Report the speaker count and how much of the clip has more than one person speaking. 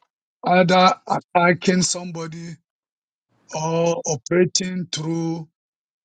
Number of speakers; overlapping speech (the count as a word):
one, no overlap